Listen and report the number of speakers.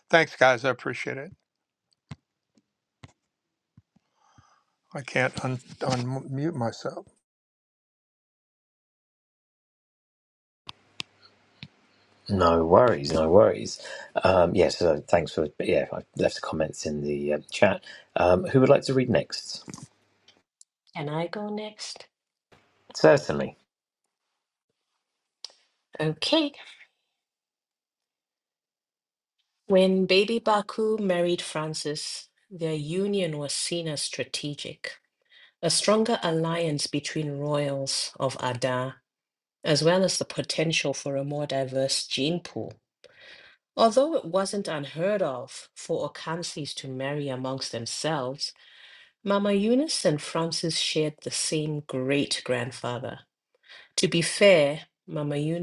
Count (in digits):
3